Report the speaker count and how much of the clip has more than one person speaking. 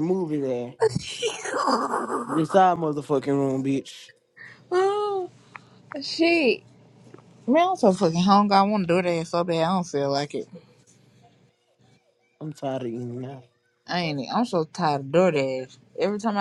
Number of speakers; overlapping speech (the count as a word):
two, no overlap